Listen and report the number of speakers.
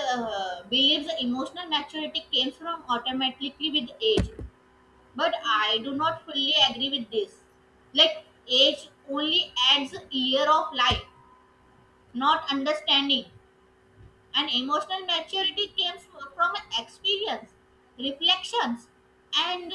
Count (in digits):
1